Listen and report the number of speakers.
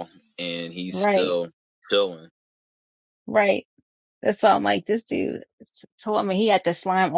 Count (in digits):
2